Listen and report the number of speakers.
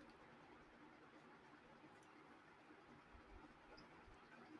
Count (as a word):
zero